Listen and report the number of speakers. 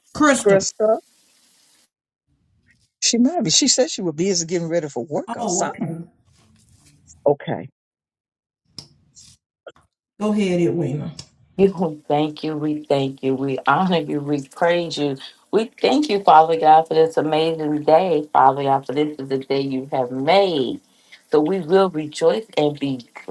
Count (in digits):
3